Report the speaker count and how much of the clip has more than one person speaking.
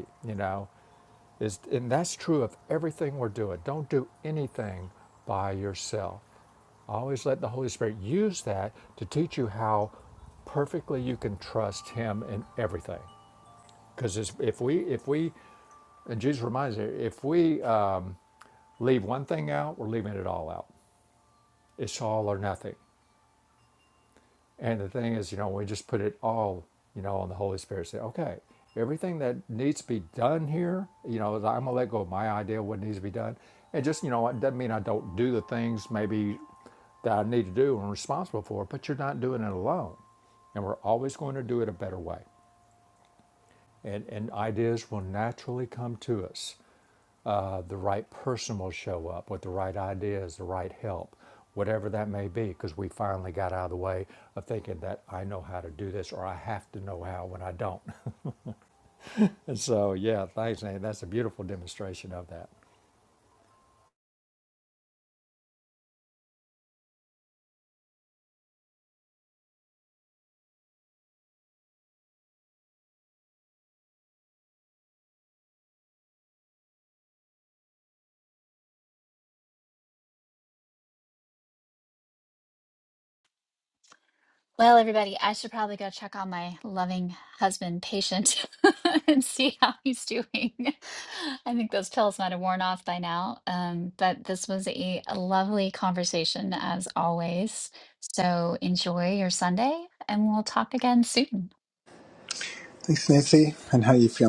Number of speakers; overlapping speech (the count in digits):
3, no overlap